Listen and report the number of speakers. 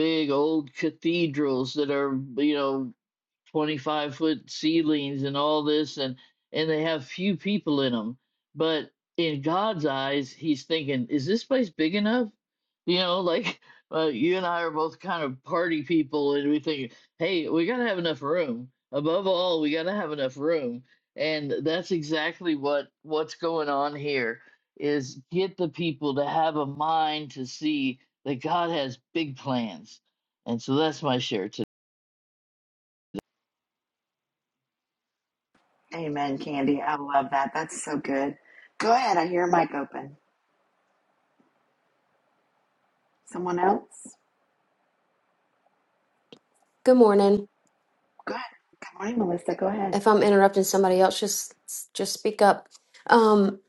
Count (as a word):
three